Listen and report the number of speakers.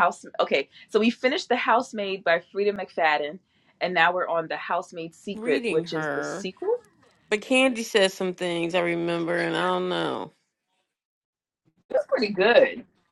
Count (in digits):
2